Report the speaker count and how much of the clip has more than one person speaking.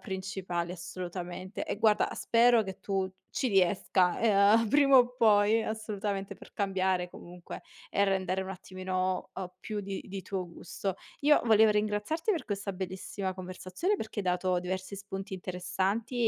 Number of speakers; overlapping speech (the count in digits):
1, no overlap